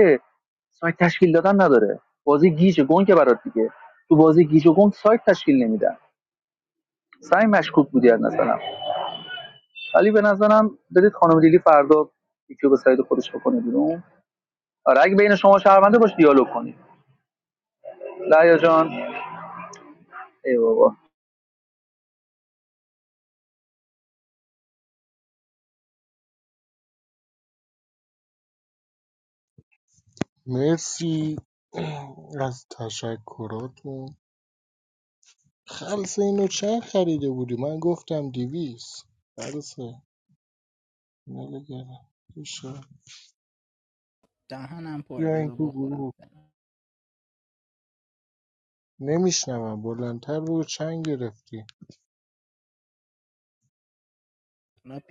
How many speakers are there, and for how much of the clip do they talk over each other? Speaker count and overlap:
three, about 2%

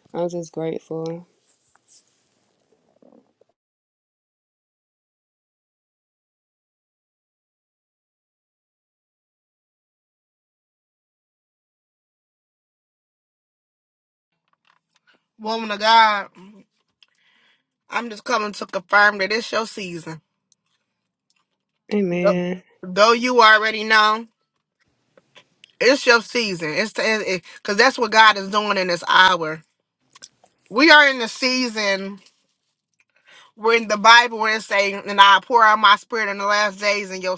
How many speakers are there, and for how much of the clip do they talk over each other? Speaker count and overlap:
two, under 1%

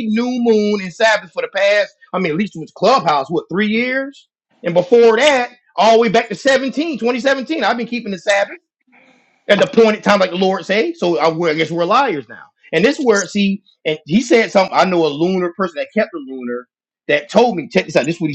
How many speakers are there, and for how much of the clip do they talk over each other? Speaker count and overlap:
one, no overlap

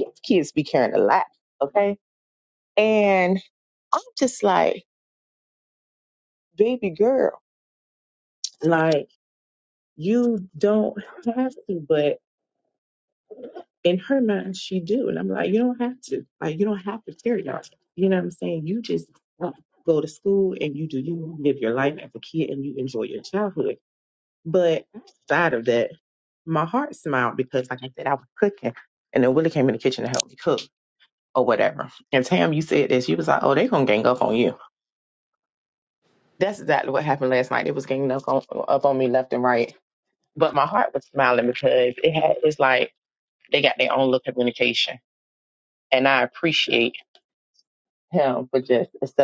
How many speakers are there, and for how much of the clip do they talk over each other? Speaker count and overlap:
one, no overlap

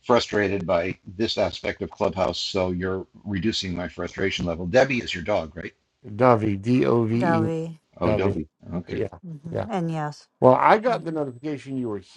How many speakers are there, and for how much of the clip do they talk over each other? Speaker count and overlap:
three, about 8%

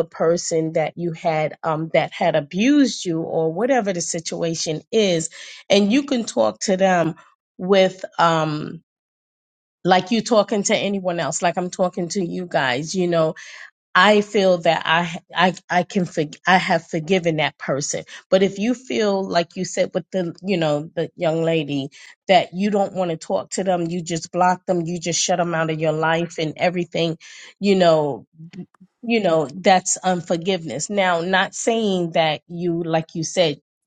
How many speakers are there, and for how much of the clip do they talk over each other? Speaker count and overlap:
one, no overlap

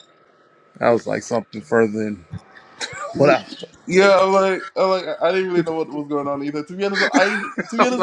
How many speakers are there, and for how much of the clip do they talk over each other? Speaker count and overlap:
two, about 12%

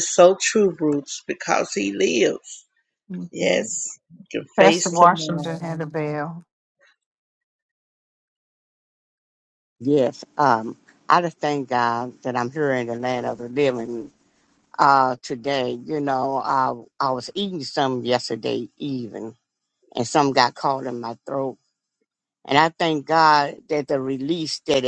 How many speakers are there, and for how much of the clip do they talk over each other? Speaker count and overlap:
three, about 6%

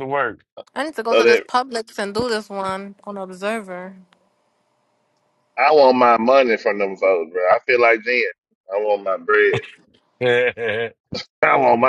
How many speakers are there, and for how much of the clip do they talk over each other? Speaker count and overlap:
three, about 3%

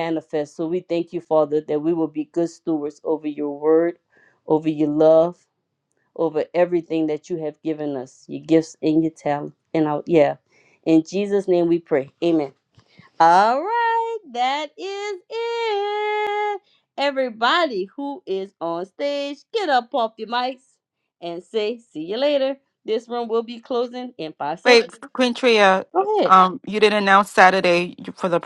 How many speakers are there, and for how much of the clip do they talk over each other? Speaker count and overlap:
two, about 1%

